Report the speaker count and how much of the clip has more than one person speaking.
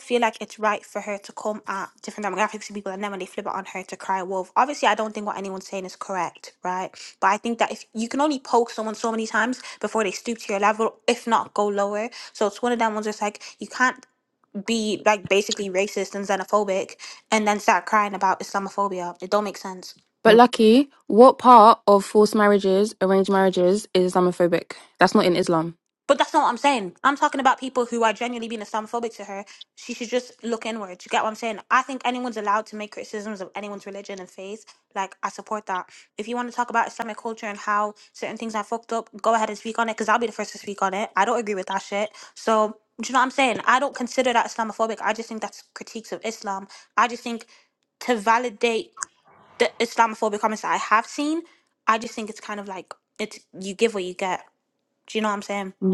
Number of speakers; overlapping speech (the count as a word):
two, no overlap